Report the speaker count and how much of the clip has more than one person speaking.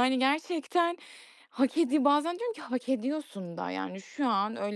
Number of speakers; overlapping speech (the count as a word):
one, no overlap